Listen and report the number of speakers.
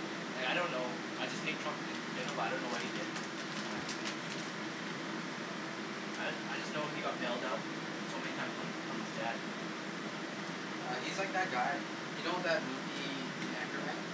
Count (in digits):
2